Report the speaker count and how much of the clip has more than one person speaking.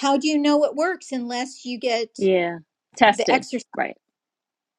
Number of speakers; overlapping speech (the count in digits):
2, about 10%